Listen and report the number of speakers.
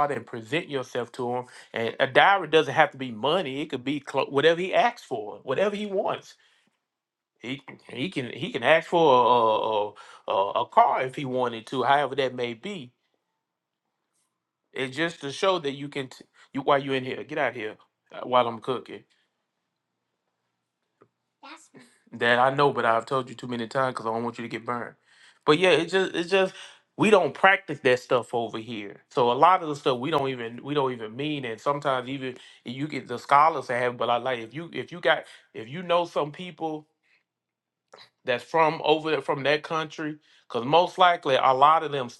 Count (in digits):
1